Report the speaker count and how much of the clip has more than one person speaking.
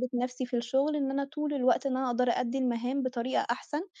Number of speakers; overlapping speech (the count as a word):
one, no overlap